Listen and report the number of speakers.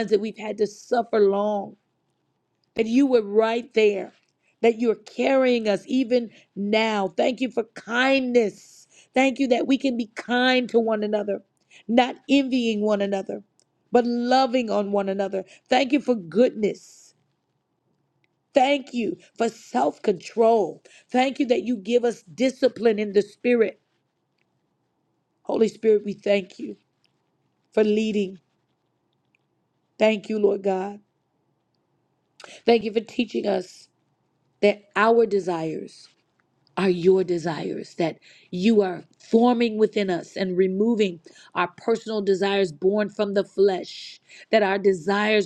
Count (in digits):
1